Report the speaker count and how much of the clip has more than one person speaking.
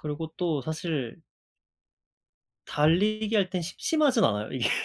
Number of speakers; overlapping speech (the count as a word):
one, no overlap